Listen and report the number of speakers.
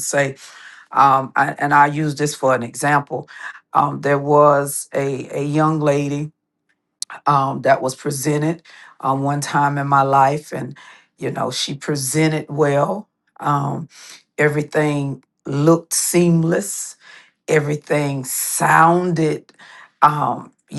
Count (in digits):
1